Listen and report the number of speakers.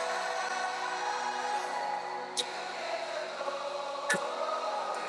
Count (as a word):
zero